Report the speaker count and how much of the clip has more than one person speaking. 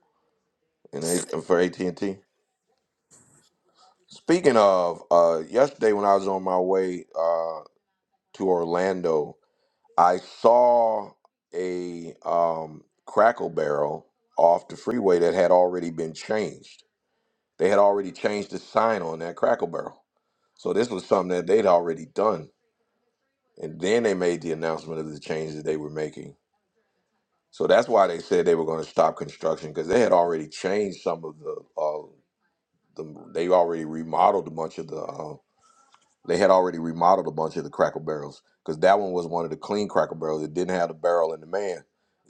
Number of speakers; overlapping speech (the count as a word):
one, no overlap